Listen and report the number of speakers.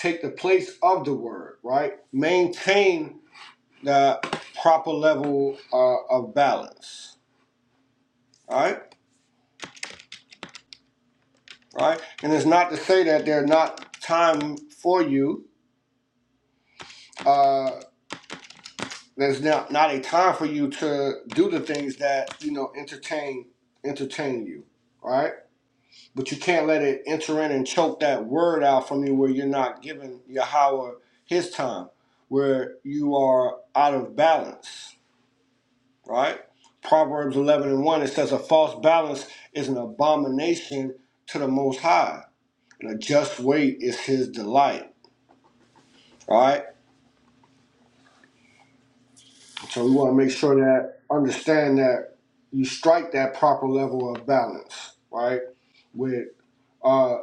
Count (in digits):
1